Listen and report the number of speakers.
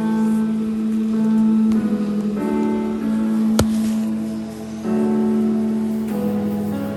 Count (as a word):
zero